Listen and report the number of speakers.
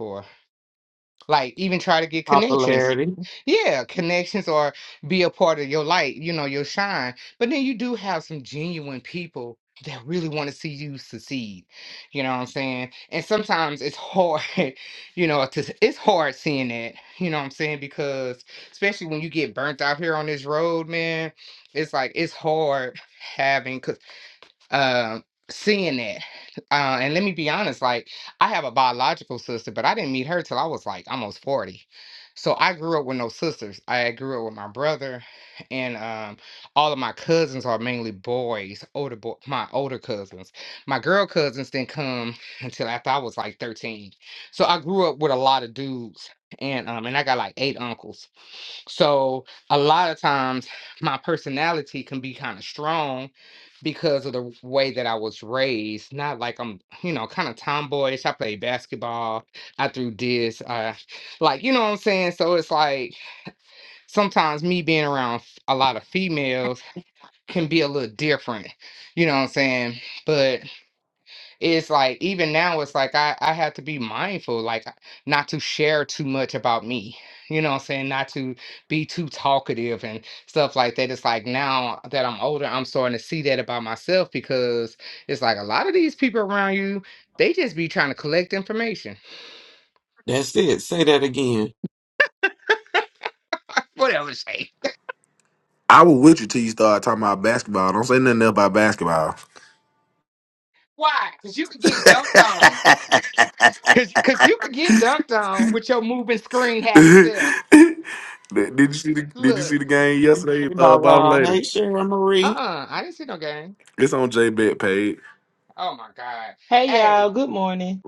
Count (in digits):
4